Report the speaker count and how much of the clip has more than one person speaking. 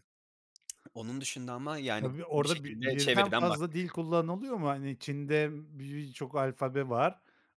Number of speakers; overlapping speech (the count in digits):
2, about 25%